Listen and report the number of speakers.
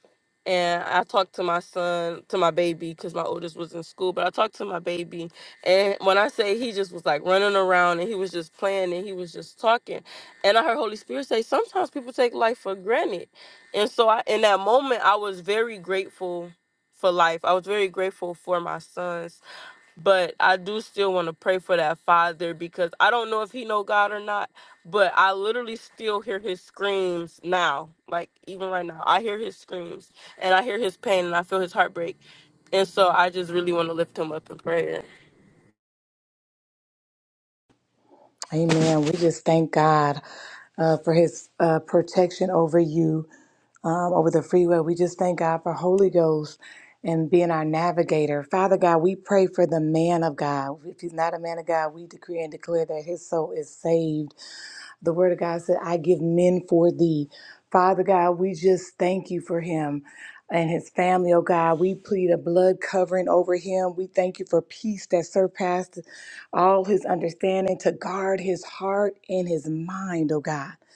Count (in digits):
2